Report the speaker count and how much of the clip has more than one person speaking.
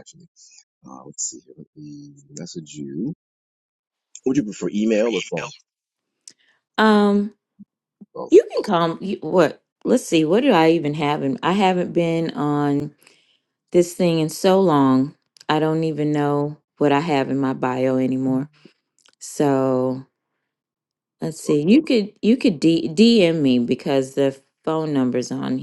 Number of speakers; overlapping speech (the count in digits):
2, under 1%